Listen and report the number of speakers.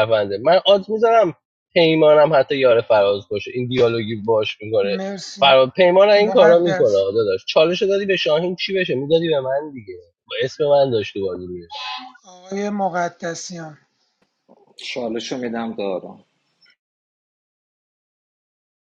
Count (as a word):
three